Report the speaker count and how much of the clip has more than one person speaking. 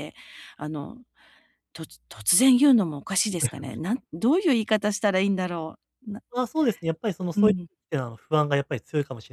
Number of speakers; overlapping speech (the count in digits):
2, about 2%